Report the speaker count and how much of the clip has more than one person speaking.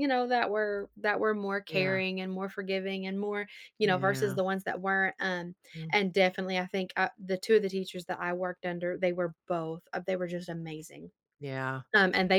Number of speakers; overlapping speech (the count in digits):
2, about 6%